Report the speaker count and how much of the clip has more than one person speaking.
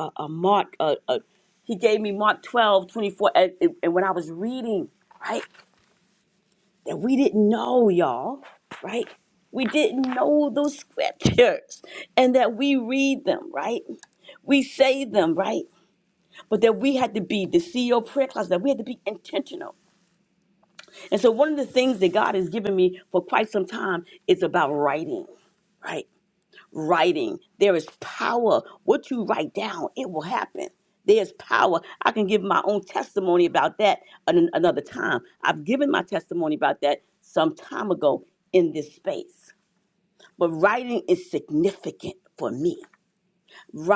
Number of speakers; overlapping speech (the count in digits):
1, no overlap